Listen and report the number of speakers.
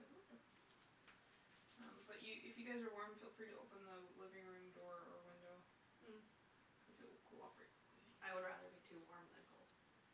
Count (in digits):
2